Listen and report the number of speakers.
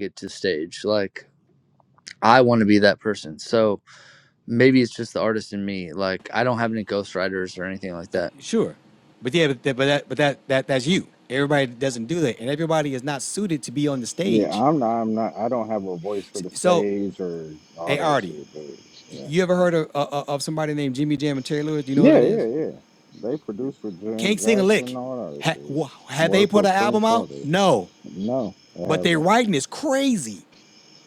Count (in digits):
3